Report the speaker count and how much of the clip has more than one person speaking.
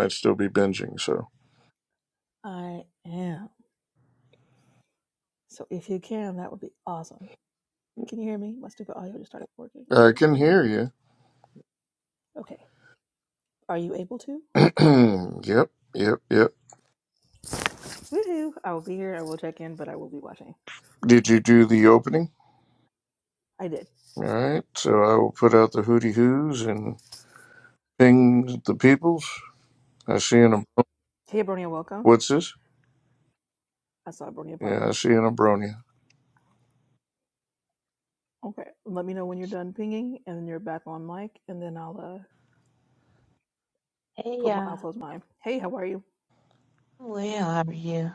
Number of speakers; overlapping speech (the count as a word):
three, about 3%